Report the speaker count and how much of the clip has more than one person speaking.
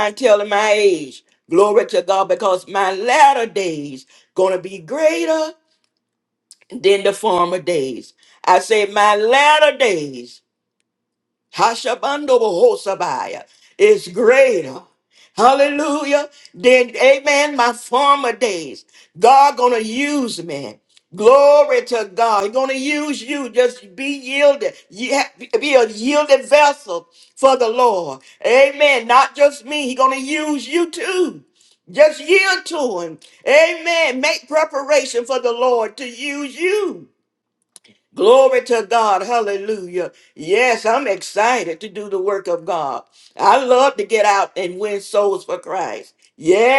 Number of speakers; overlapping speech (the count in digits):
1, no overlap